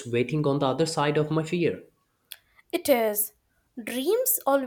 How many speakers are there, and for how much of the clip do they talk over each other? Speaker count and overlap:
2, no overlap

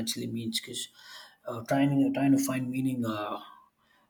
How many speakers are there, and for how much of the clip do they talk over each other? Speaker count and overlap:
1, no overlap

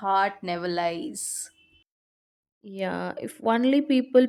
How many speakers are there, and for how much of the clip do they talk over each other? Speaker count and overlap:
2, no overlap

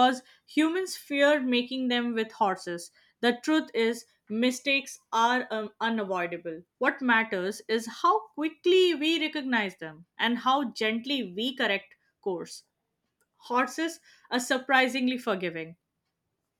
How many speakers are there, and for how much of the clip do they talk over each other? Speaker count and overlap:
1, no overlap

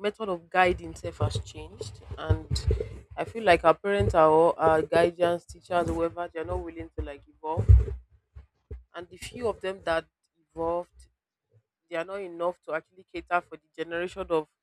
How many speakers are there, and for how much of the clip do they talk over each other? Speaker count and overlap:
1, no overlap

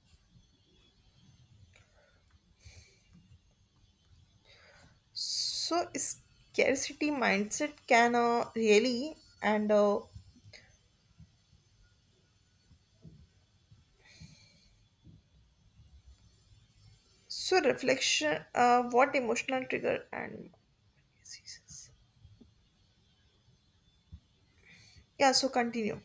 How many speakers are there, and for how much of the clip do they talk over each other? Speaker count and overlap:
1, no overlap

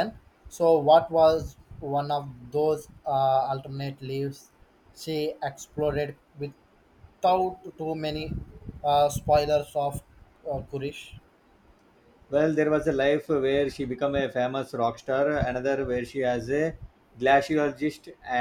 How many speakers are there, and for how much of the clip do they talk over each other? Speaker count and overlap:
2, no overlap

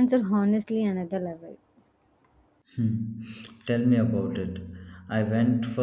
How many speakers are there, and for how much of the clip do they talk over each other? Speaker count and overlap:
2, no overlap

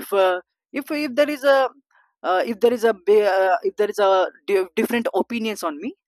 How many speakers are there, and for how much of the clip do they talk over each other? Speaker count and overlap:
1, no overlap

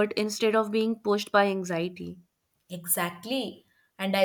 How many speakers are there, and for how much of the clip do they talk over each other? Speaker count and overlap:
2, no overlap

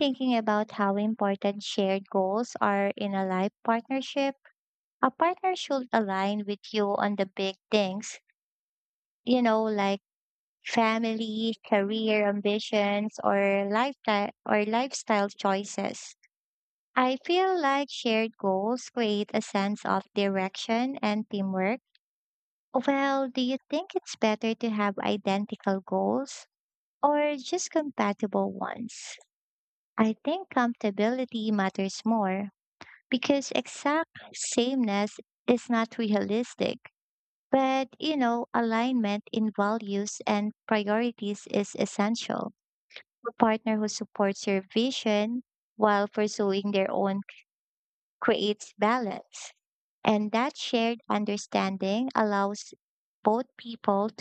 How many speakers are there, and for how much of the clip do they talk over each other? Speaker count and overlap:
1, no overlap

